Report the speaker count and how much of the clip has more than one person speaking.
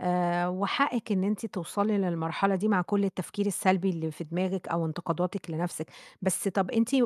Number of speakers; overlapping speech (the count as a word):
one, no overlap